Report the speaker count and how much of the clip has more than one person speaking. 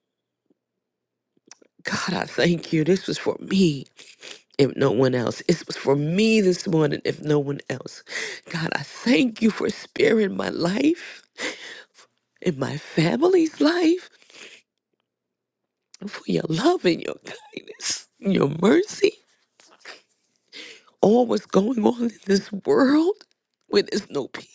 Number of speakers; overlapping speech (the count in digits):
1, no overlap